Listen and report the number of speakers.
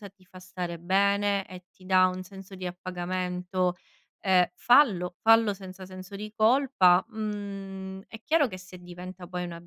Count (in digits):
1